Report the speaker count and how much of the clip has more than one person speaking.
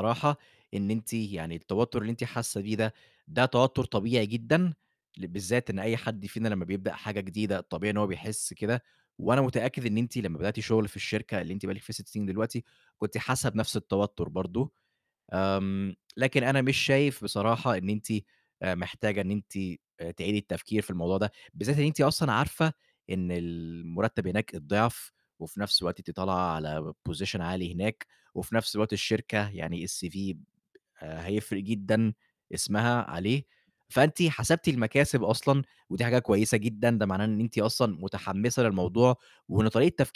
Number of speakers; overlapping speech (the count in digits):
1, no overlap